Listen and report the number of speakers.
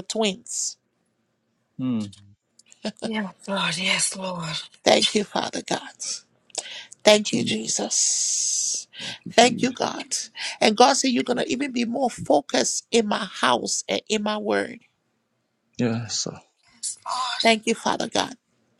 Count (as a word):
three